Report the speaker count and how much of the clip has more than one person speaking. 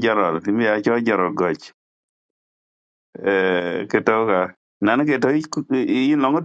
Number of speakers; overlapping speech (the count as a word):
one, no overlap